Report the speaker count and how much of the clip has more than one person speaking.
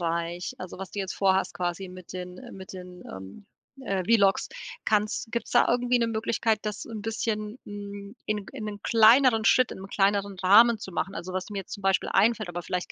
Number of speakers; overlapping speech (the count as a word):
one, no overlap